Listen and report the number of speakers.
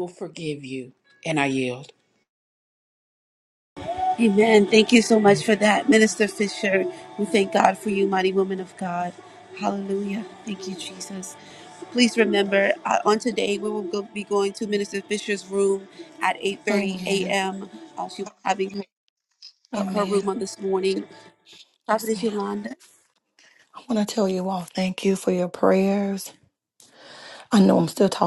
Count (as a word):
three